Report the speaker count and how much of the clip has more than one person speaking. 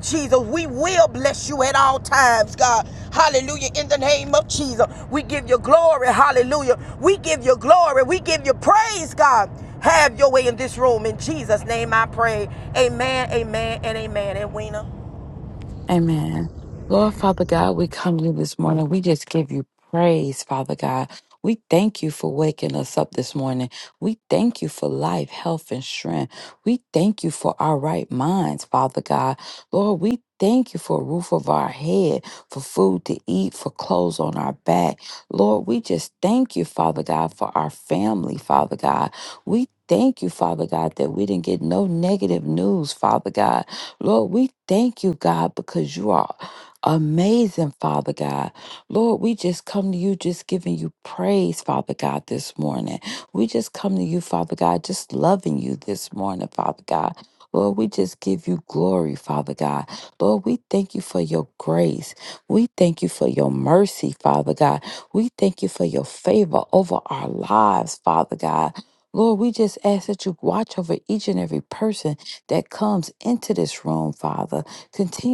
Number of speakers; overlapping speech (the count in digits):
2, no overlap